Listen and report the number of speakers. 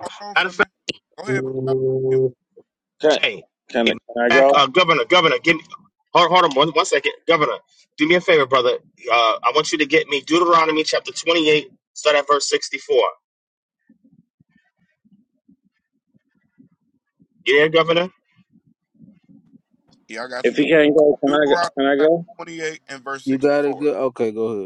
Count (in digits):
4